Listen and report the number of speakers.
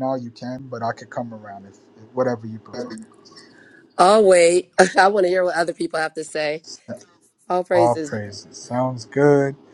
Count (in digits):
2